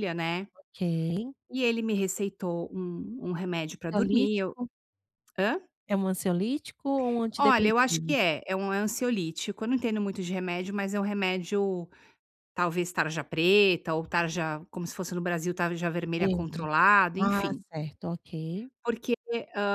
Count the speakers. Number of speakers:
two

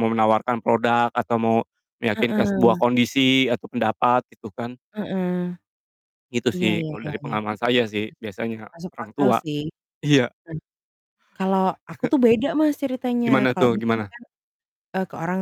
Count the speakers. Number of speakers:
two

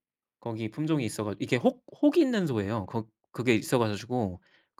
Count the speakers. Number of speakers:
one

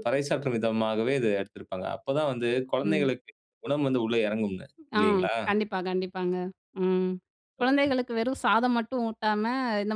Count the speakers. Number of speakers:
two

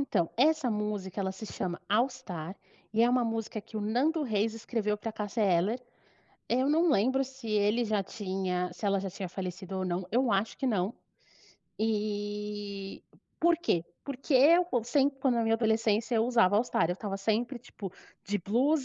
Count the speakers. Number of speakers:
one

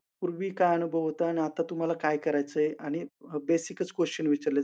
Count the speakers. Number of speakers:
one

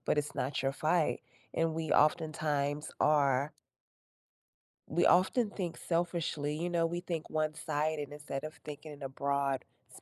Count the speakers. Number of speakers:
one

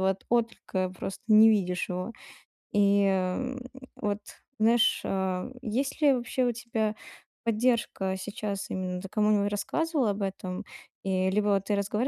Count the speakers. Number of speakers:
one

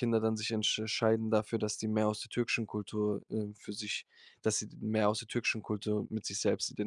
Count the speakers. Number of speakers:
one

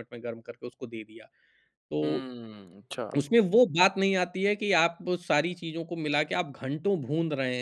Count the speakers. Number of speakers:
two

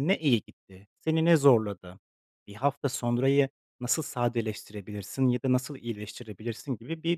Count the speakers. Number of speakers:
one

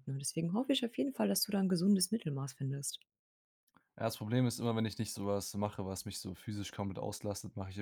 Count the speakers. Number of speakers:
two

